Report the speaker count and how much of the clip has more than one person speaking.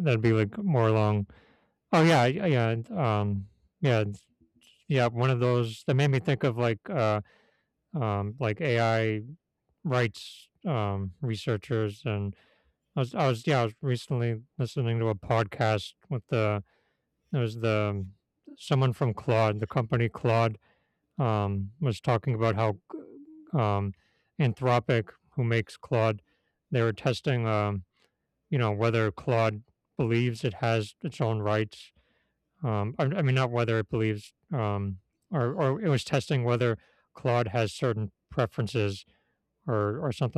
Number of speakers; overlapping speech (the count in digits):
1, no overlap